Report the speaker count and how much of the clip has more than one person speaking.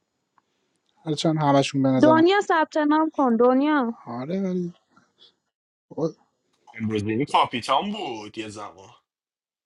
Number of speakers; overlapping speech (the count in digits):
3, about 3%